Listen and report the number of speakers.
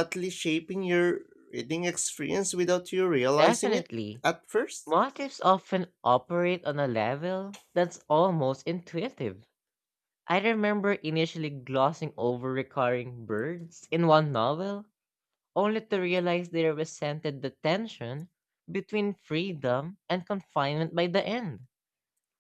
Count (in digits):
2